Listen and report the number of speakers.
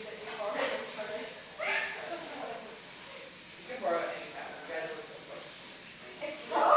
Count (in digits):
2